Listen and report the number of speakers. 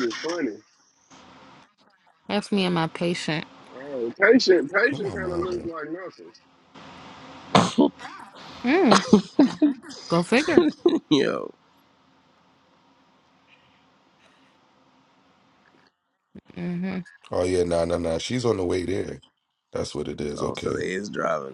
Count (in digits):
4